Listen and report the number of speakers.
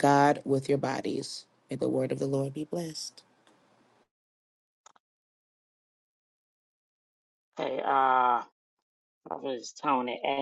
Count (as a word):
two